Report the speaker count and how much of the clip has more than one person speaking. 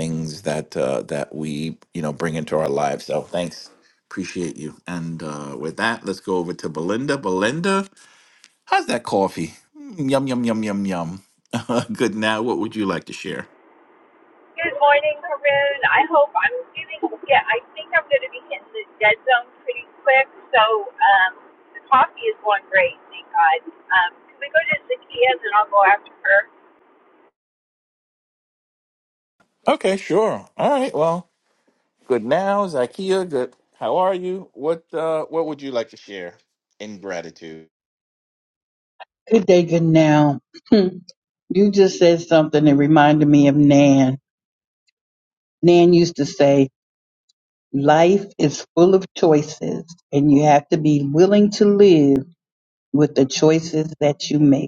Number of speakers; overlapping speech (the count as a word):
three, no overlap